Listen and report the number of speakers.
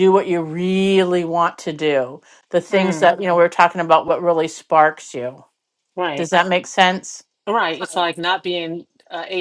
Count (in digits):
2